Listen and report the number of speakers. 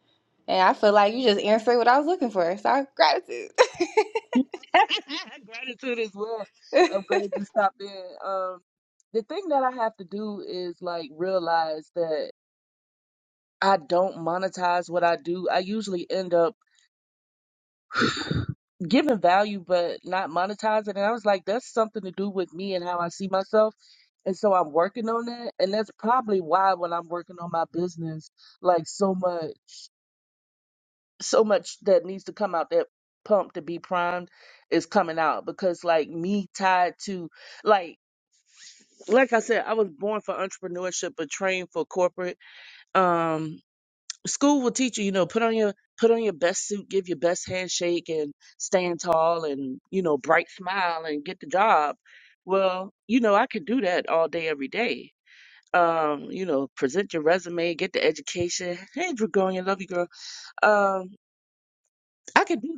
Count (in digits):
2